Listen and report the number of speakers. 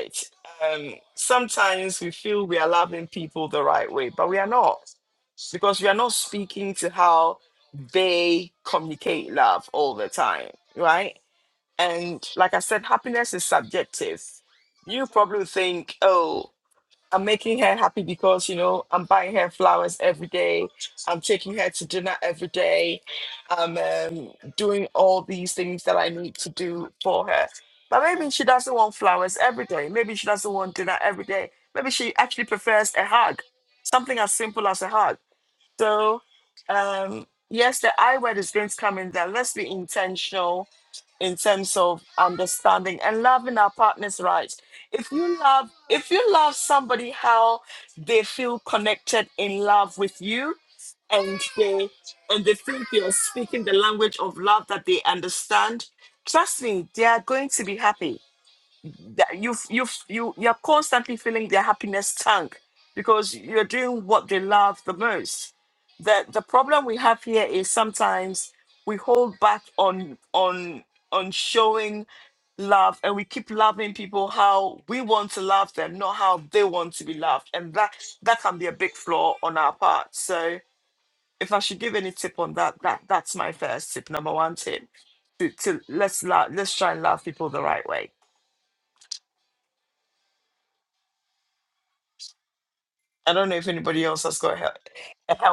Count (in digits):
1